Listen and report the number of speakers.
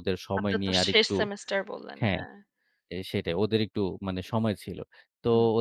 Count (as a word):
two